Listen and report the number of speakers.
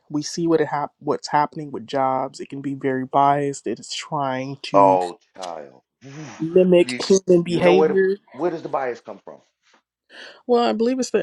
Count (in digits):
2